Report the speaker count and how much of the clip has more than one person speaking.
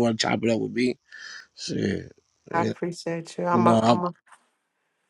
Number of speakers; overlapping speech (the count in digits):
2, about 14%